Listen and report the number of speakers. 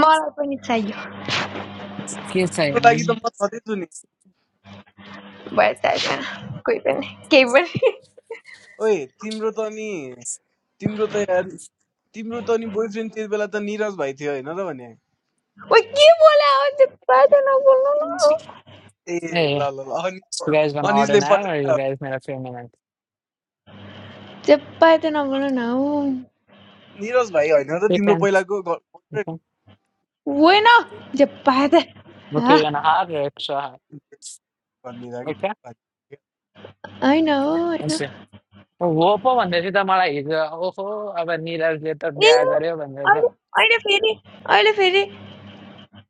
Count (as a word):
three